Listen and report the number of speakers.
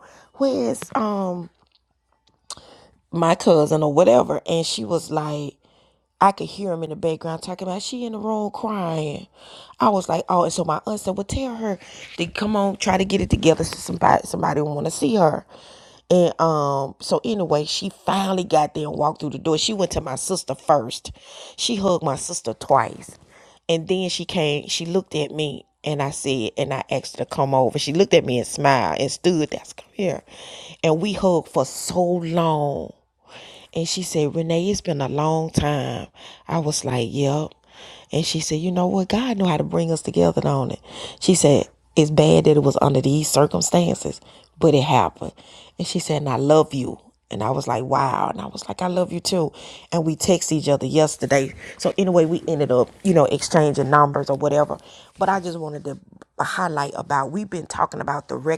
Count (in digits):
1